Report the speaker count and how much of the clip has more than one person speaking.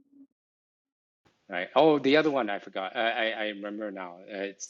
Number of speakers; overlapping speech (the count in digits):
1, no overlap